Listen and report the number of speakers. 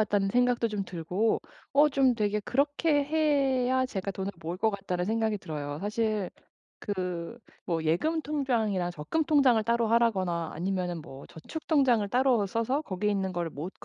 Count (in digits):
1